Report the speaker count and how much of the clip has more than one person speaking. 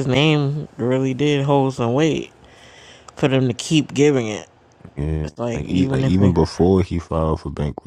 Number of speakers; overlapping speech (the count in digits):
2, about 15%